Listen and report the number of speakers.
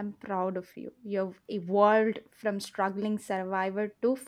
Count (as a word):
one